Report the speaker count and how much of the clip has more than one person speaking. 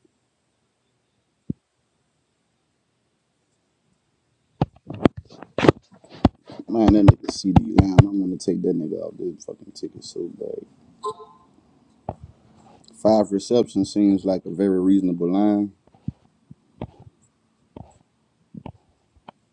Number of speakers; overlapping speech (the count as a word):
one, no overlap